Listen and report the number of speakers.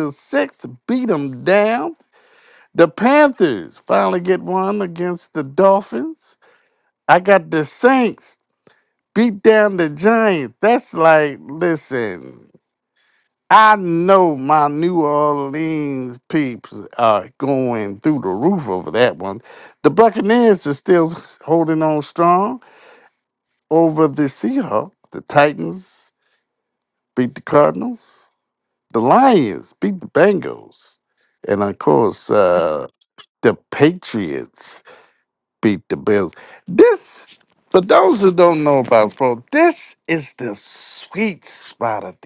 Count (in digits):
1